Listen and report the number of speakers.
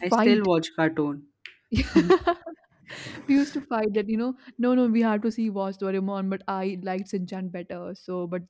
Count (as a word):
two